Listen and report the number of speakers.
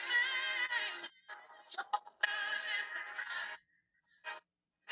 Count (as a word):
zero